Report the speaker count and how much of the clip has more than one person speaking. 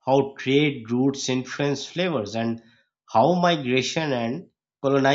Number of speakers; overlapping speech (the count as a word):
one, no overlap